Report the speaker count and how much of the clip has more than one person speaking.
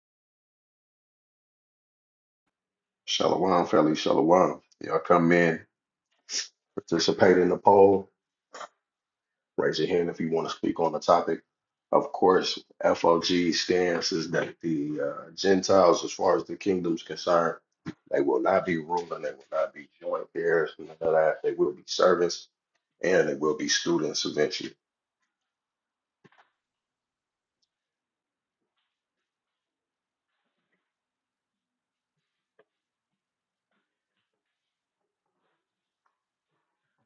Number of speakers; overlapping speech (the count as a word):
one, no overlap